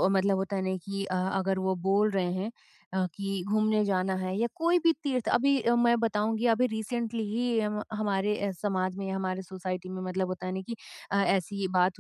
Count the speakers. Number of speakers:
1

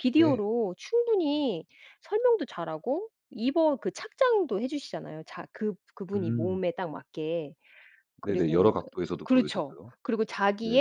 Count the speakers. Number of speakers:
2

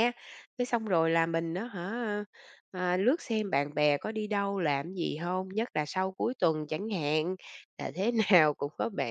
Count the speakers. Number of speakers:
1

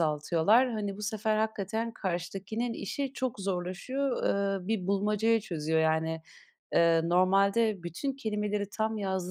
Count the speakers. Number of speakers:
1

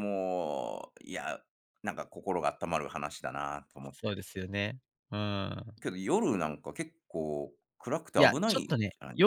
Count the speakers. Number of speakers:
2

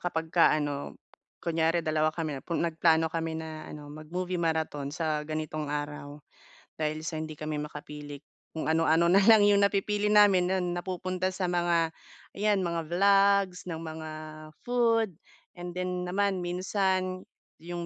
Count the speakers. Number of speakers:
1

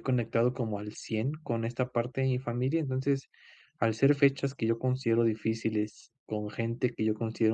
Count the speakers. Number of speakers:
1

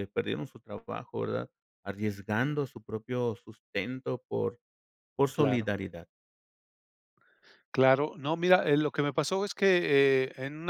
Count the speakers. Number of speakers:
2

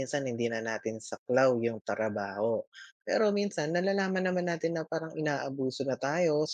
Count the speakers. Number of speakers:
1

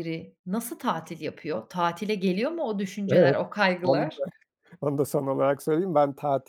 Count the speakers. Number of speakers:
2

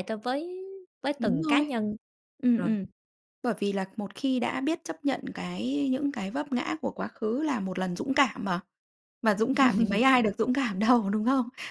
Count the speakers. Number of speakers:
2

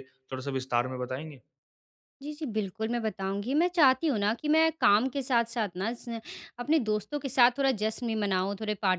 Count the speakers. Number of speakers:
2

